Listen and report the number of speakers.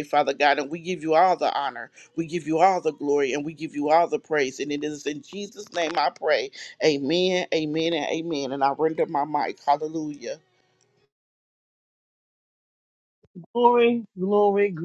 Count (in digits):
2